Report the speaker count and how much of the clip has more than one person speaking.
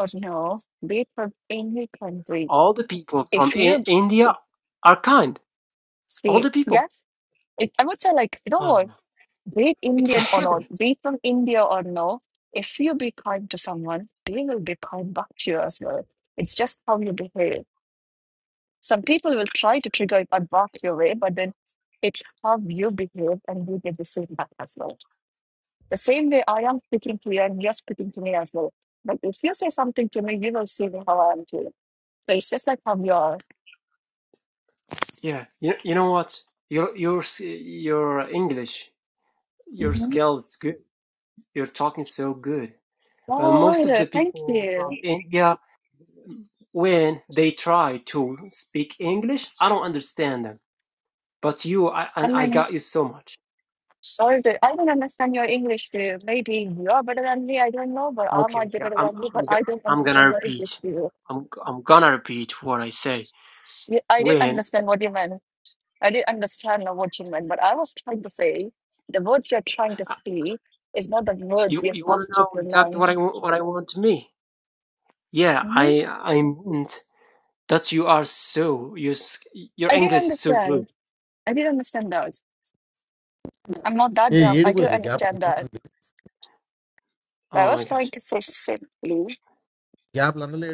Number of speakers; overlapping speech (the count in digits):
3, about 12%